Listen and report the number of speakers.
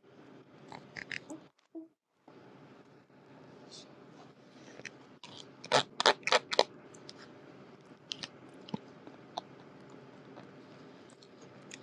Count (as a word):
zero